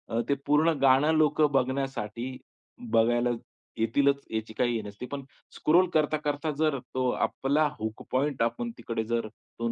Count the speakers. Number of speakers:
1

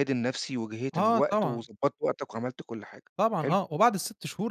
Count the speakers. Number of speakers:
2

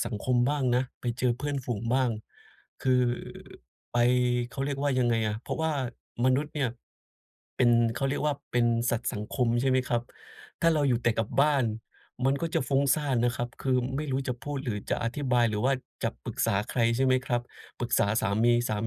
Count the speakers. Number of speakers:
1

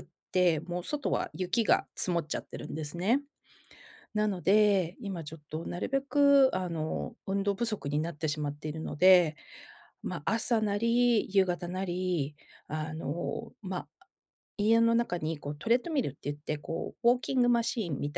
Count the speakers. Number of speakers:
1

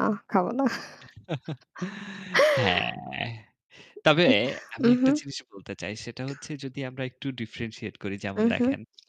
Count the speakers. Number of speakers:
2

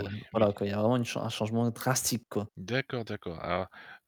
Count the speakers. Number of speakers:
2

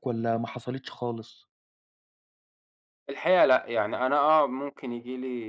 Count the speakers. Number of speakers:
2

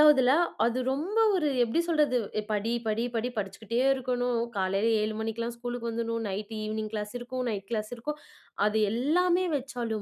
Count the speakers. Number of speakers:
1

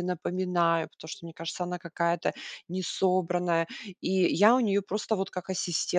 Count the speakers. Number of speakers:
1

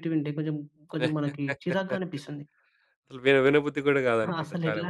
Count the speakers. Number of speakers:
2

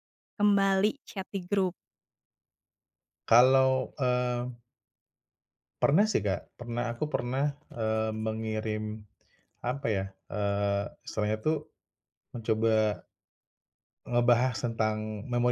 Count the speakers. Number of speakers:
2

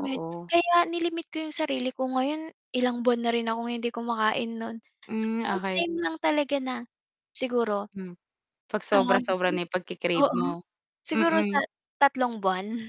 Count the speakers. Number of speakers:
2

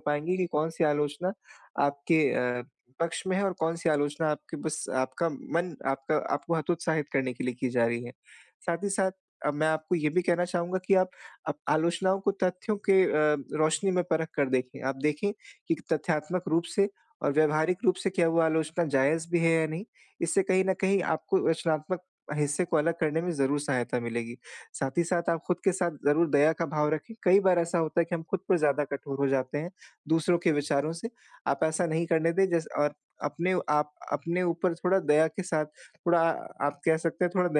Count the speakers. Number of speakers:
1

